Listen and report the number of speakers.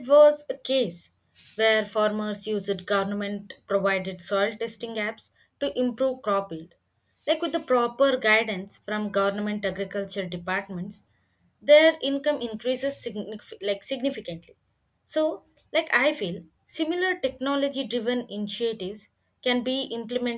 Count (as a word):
one